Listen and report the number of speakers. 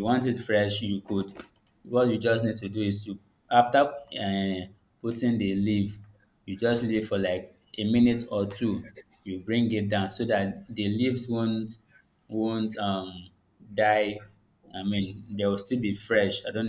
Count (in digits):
1